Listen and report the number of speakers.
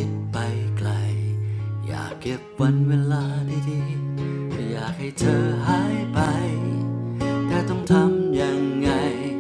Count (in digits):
1